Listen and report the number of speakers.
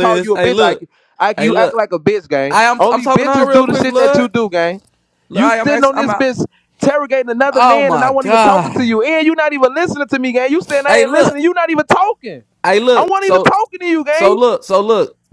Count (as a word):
two